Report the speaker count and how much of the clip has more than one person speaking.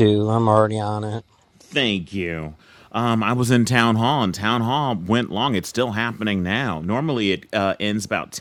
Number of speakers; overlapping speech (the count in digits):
2, no overlap